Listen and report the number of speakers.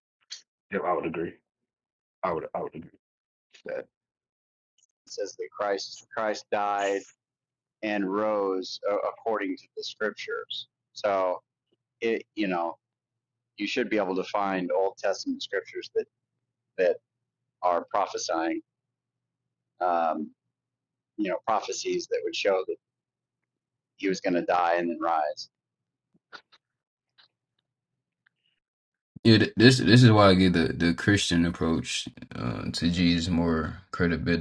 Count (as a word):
three